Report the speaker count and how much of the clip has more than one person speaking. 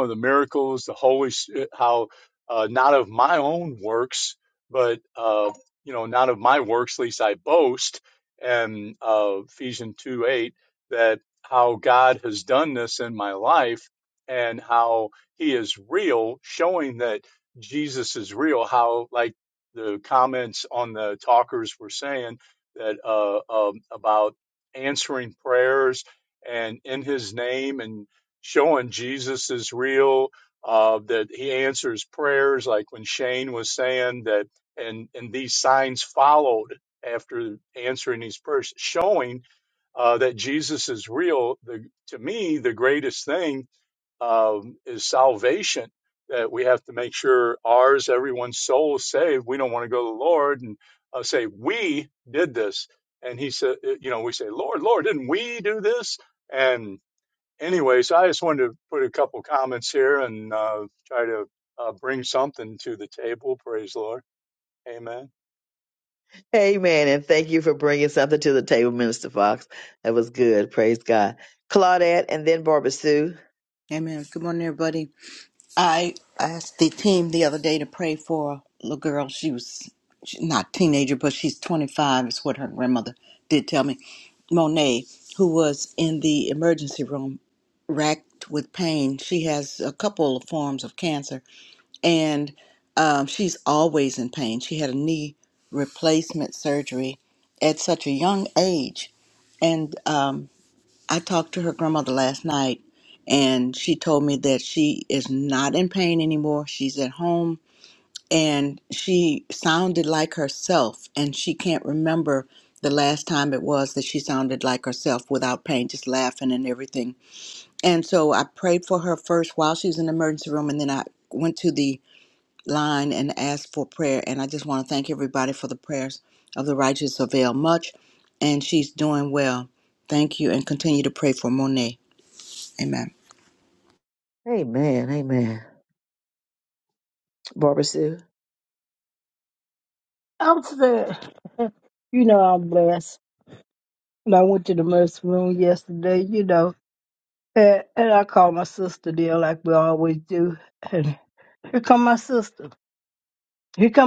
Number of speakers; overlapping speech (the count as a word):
four, no overlap